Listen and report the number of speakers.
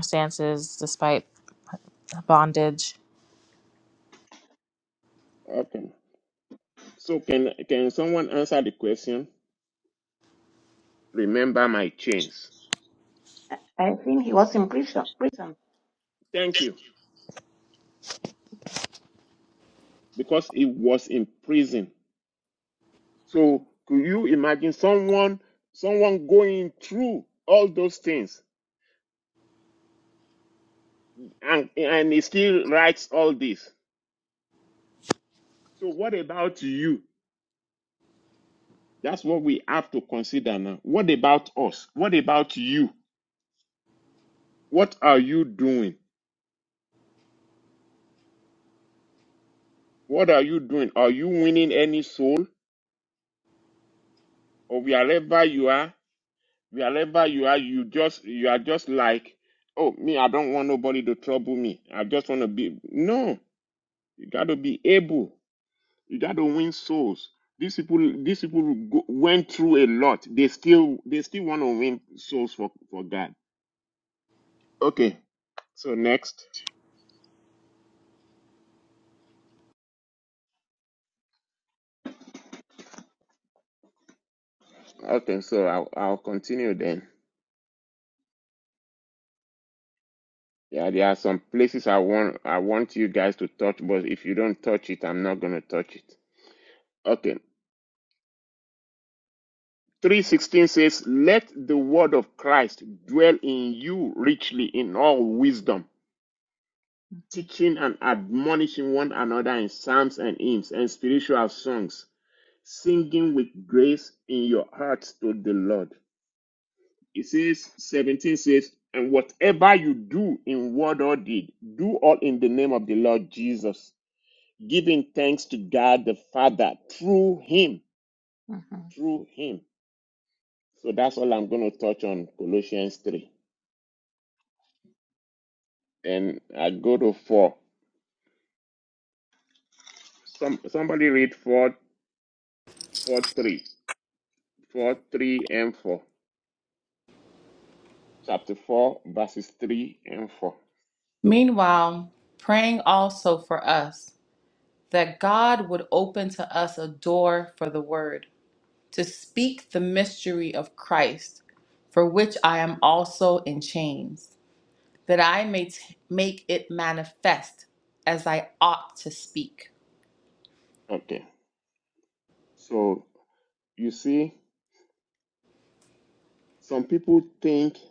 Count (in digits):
4